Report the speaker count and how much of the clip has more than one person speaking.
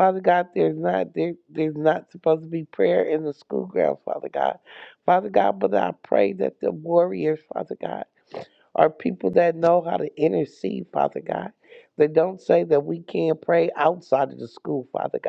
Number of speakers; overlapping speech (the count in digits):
1, no overlap